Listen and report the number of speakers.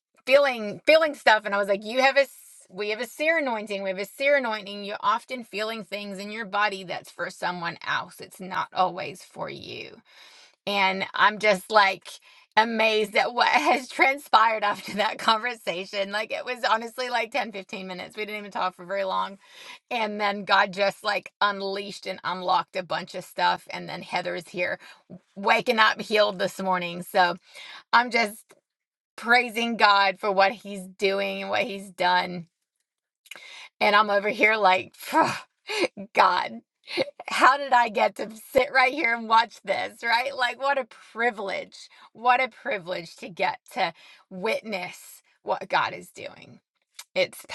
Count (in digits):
1